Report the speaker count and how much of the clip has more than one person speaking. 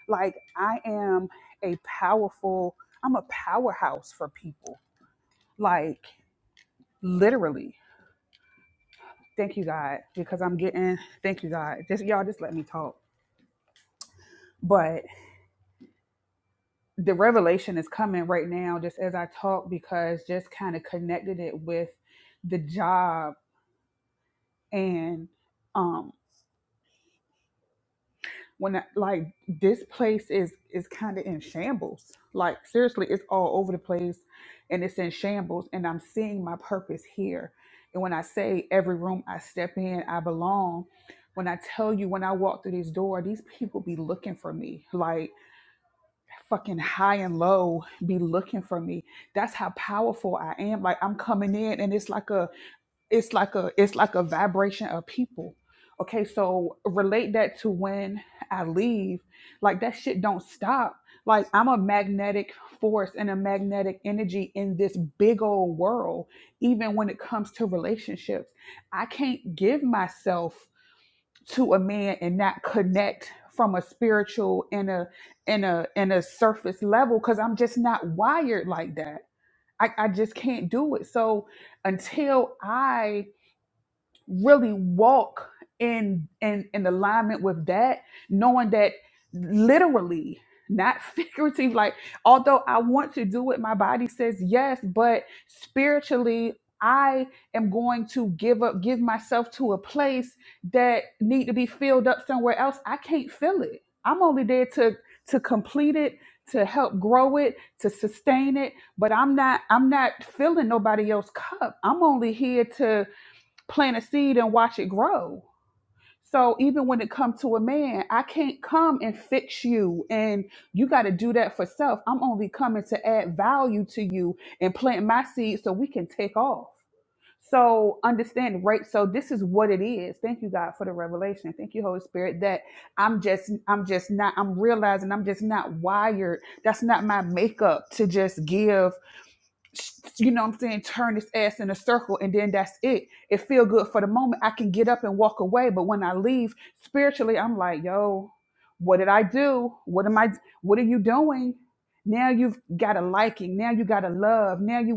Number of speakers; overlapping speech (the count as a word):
one, no overlap